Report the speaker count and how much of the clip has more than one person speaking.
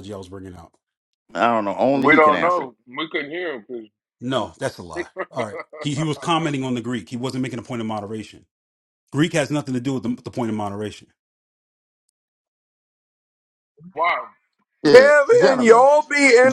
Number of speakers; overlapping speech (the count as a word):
four, about 11%